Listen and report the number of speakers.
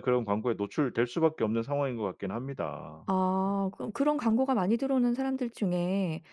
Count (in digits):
2